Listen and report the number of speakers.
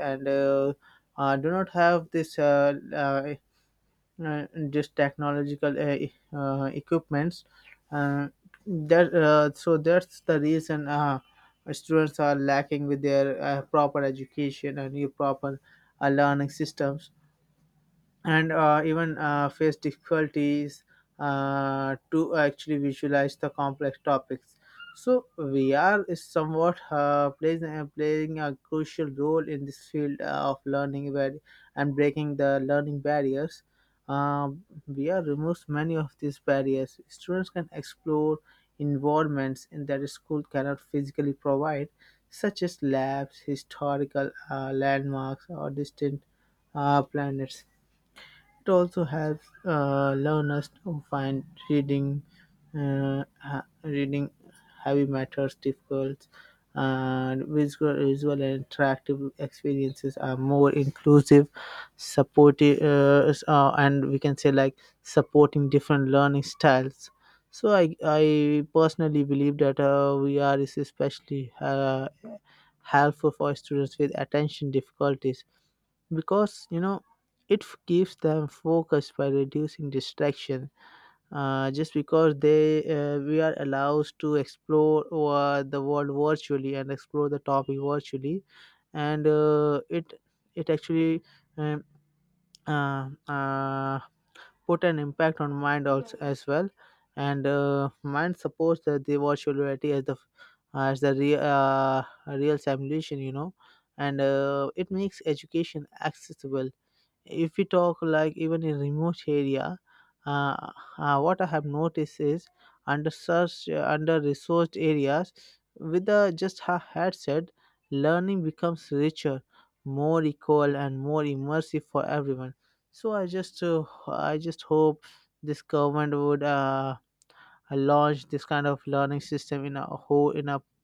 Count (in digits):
1